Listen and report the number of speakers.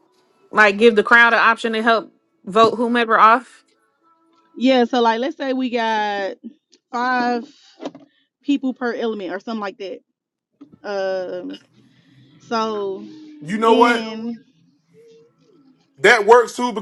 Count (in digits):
3